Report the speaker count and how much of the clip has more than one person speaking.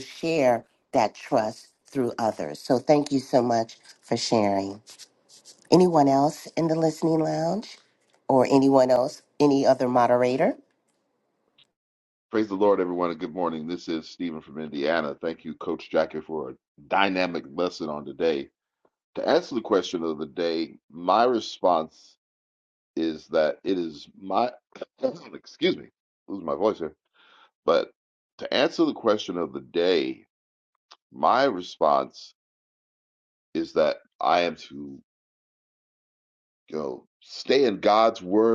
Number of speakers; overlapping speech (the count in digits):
2, no overlap